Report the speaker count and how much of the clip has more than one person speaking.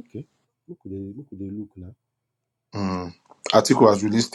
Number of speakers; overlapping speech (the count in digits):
2, no overlap